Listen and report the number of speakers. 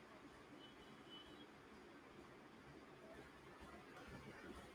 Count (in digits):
0